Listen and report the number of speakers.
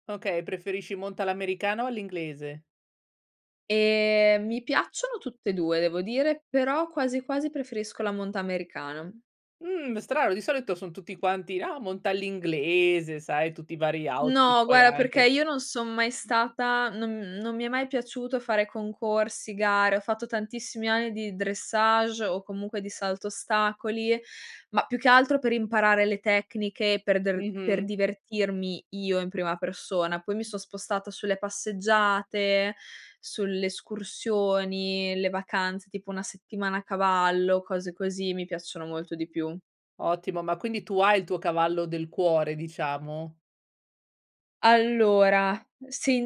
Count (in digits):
2